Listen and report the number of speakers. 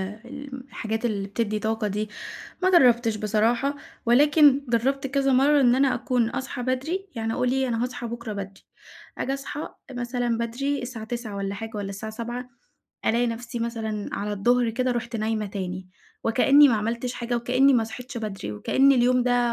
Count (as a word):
one